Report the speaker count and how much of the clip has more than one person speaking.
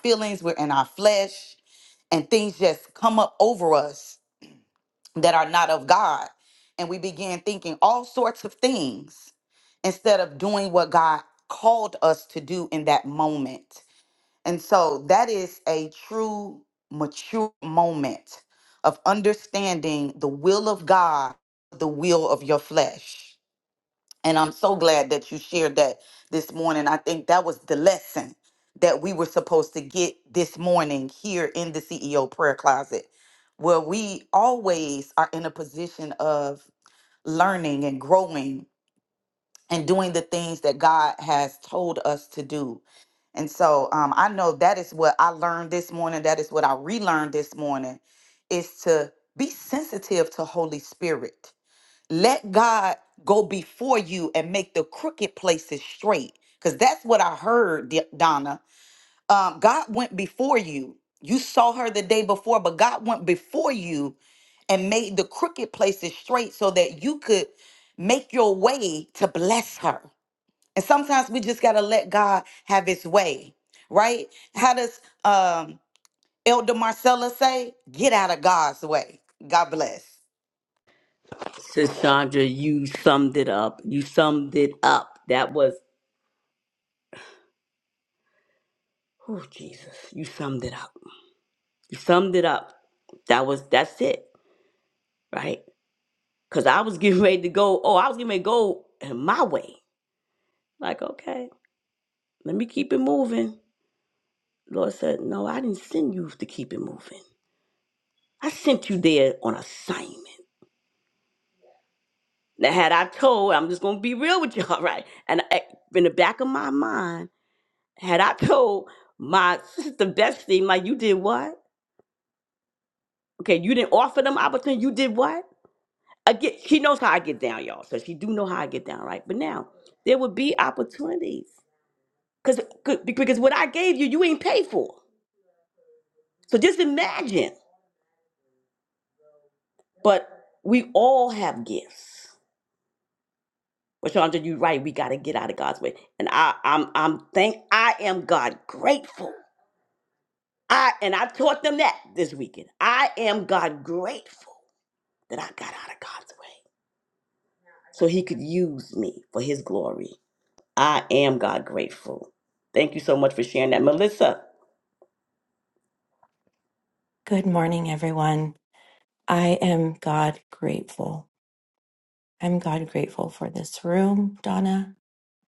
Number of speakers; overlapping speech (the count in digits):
3, no overlap